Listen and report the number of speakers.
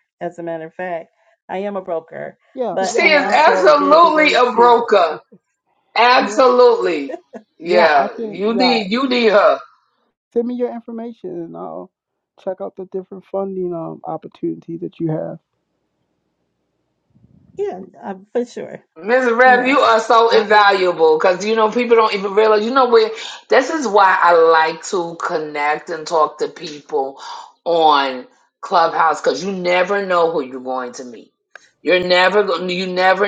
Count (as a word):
three